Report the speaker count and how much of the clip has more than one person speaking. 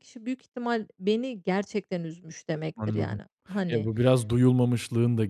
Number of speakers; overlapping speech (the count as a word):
two, about 11%